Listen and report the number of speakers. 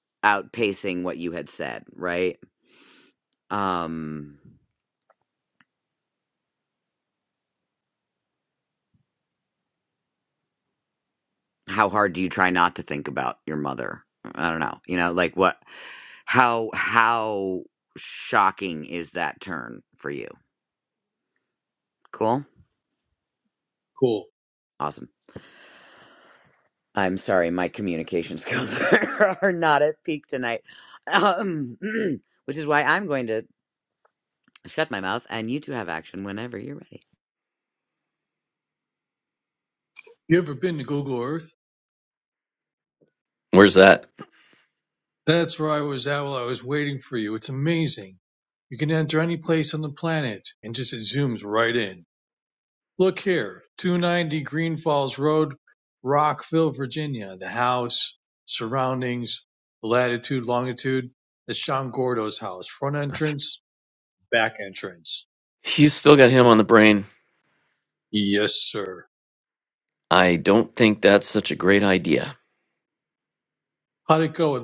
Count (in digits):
3